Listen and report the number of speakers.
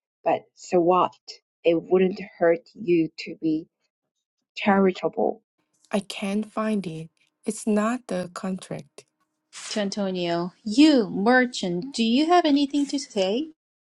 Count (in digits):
3